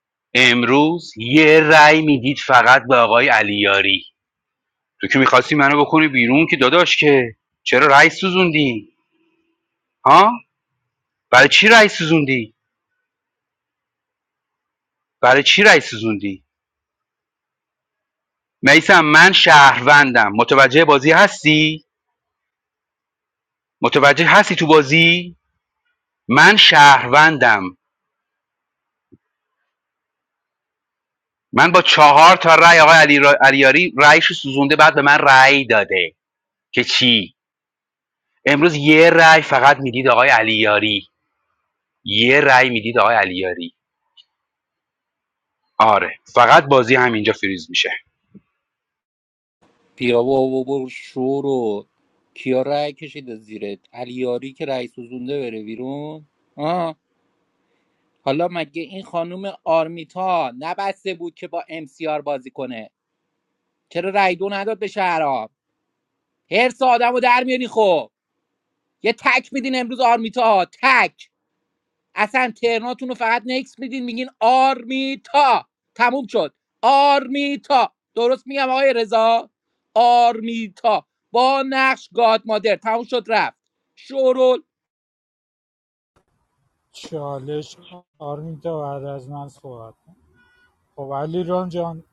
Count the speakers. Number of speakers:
3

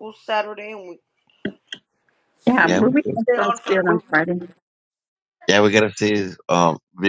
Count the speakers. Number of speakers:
3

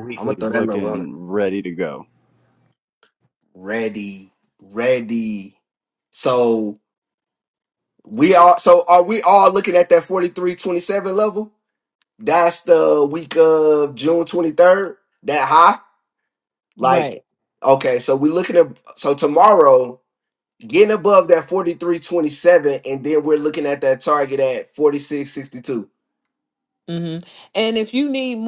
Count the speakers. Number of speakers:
3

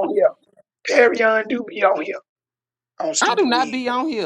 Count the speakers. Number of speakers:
2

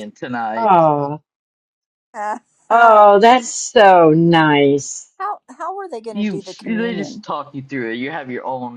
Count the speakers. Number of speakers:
3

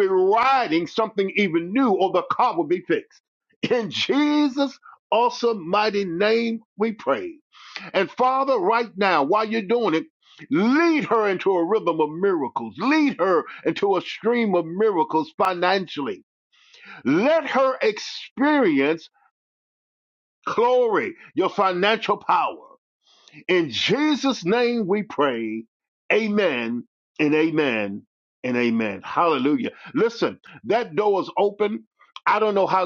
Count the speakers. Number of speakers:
1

